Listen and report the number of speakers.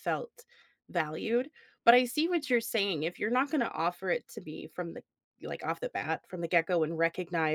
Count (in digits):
1